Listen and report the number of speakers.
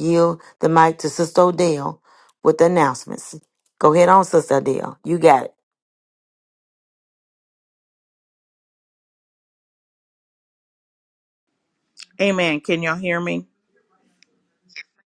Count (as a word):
two